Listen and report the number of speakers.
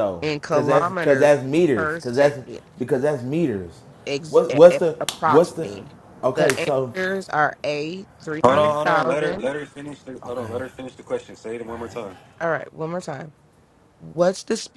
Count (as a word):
three